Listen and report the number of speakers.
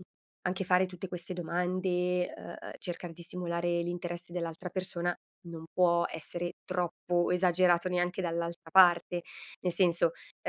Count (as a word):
one